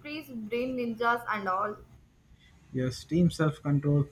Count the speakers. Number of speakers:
2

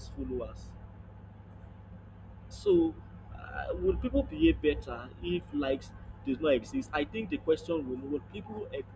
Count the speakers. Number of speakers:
1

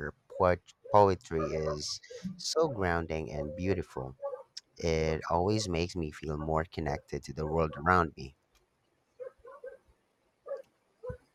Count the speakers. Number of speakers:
1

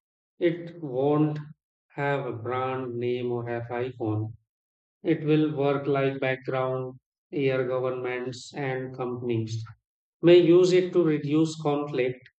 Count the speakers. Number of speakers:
1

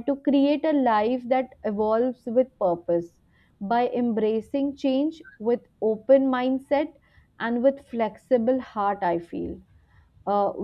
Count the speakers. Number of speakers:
1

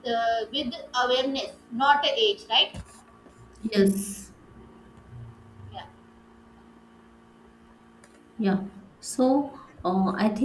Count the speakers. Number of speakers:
2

